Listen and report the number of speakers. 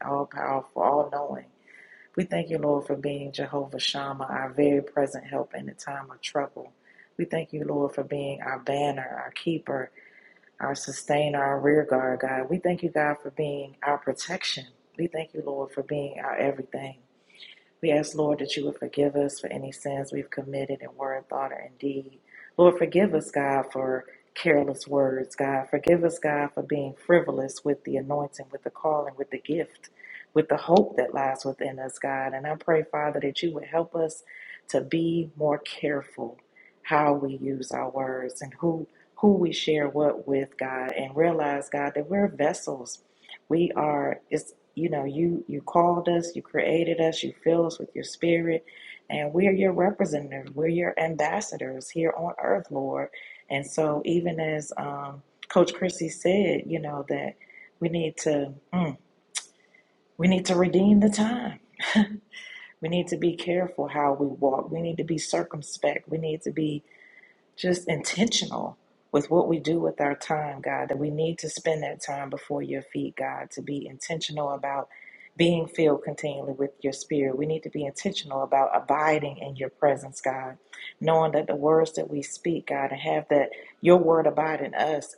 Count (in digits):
1